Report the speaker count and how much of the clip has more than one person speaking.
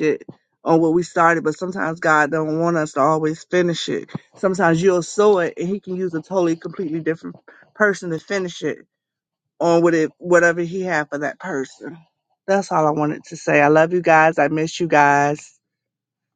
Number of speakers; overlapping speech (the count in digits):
1, no overlap